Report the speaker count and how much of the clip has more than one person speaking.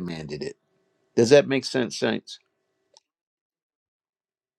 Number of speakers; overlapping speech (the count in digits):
1, no overlap